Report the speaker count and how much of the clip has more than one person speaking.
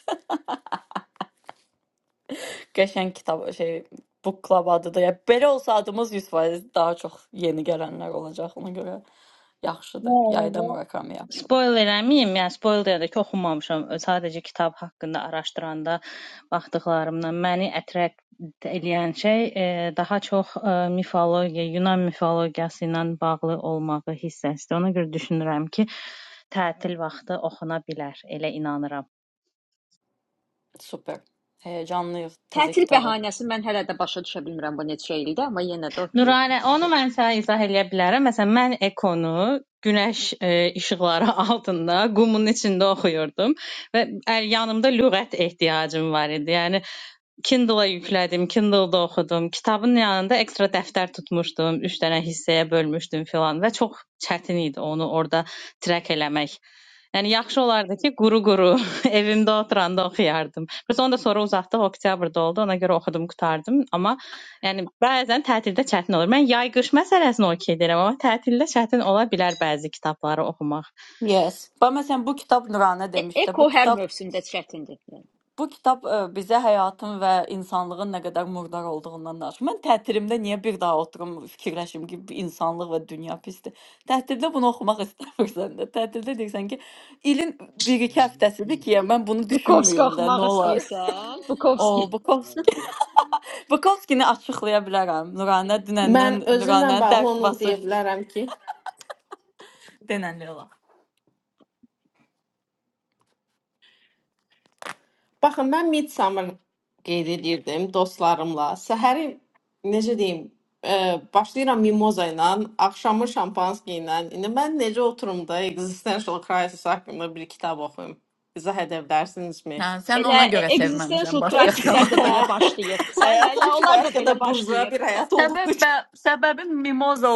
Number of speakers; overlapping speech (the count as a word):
four, about 8%